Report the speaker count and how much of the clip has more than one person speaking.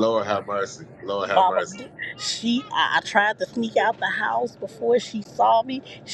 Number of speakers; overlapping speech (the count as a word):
two, about 6%